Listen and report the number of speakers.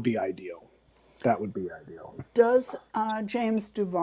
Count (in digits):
2